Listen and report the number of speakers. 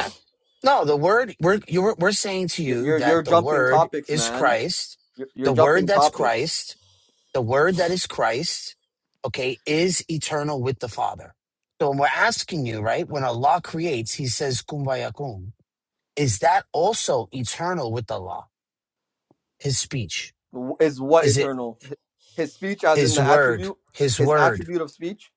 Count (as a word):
two